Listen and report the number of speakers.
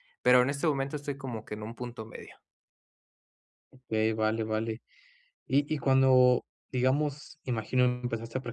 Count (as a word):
two